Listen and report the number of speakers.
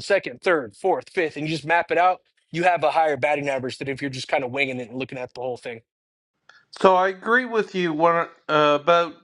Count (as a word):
two